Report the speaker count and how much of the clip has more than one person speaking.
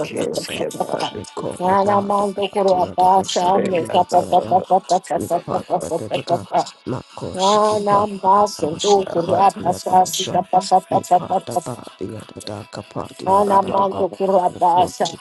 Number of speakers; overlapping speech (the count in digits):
3, about 62%